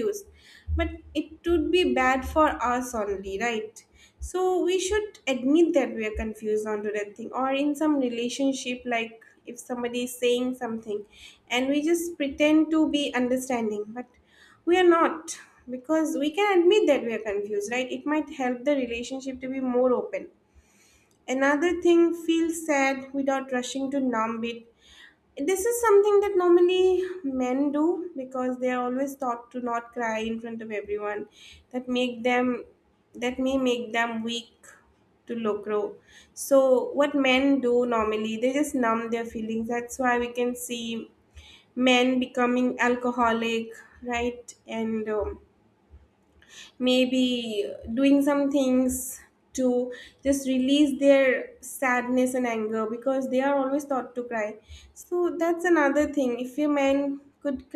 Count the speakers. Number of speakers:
one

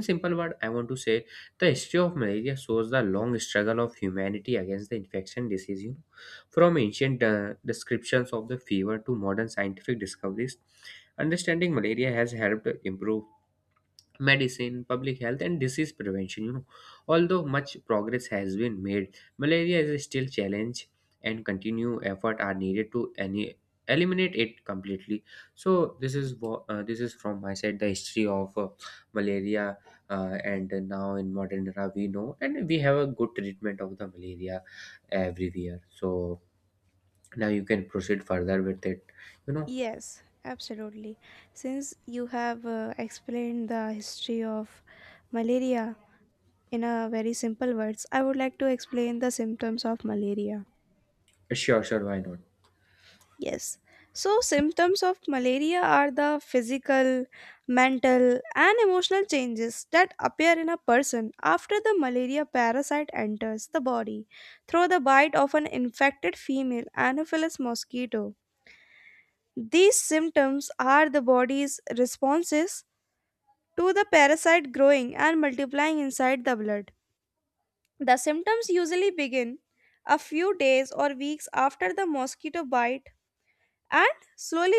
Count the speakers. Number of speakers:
two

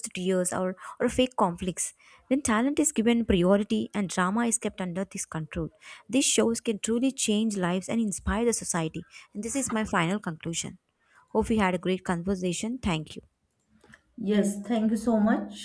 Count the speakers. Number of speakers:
two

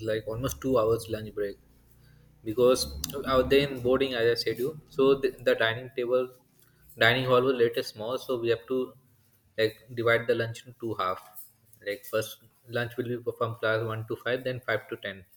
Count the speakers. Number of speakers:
one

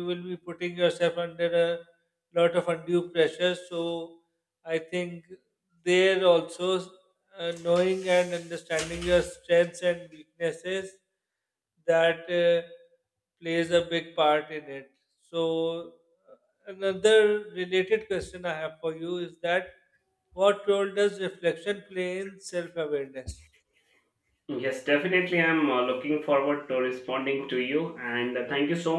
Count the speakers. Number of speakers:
two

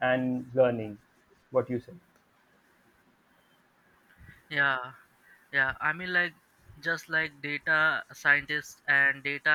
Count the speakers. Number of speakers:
two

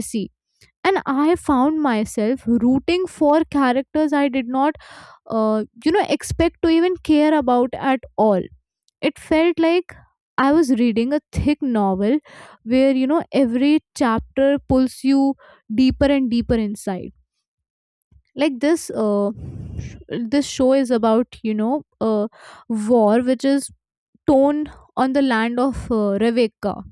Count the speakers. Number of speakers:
one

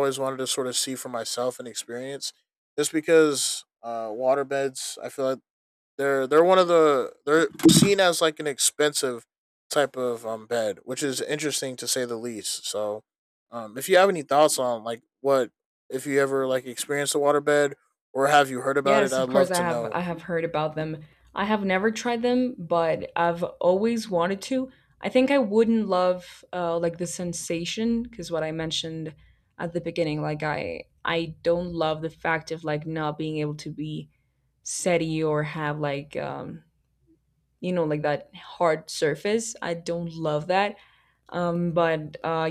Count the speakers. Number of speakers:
two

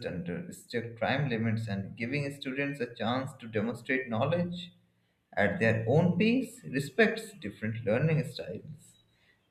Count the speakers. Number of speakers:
one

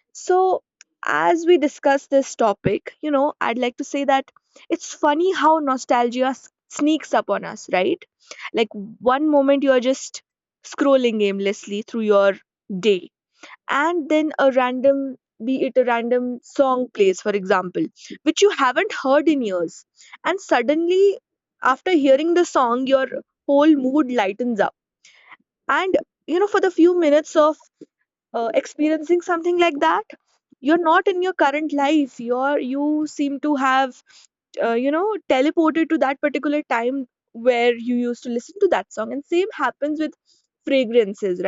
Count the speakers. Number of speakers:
one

